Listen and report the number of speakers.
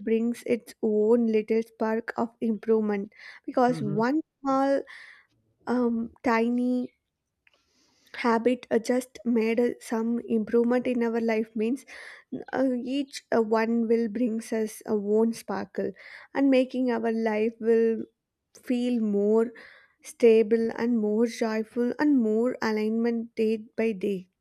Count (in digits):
1